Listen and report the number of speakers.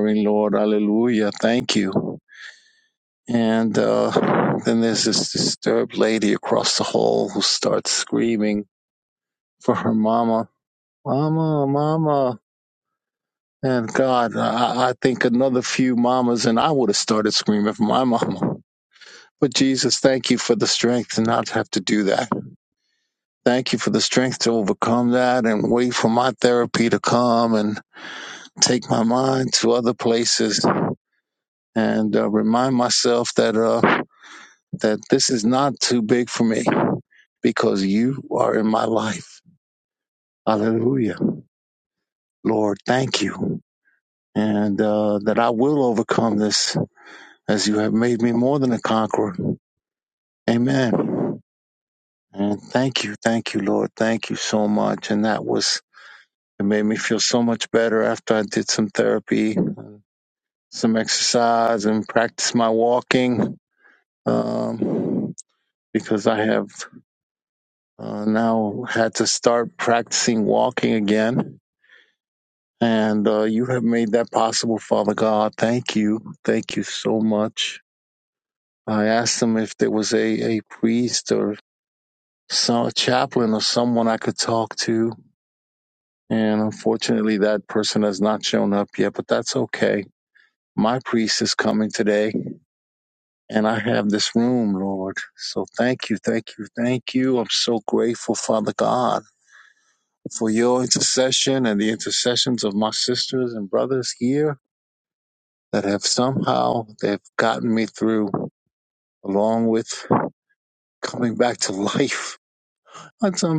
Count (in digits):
1